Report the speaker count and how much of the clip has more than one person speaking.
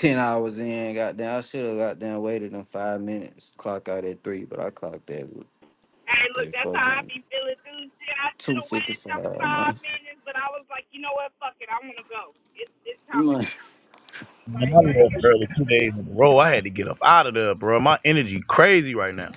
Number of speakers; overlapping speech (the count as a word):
three, about 12%